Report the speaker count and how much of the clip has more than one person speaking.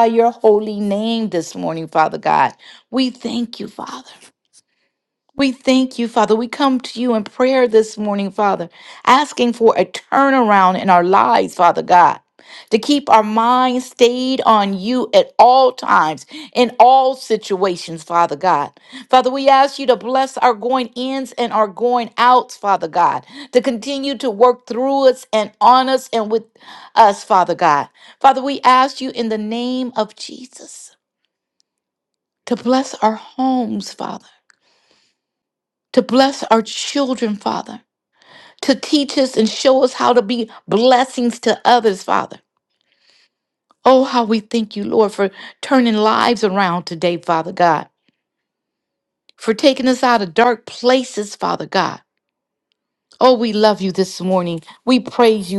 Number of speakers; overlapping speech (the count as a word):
one, no overlap